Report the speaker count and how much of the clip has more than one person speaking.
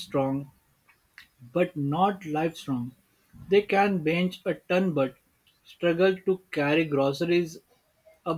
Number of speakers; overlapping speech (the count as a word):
one, no overlap